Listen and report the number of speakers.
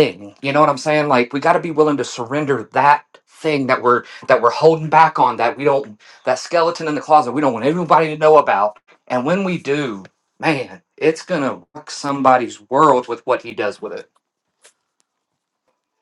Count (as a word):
one